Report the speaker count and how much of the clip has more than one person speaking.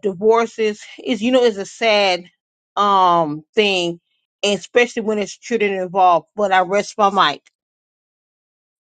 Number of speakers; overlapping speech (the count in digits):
1, no overlap